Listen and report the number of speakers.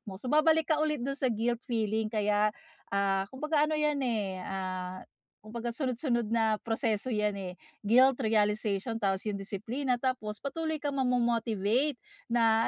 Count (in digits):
1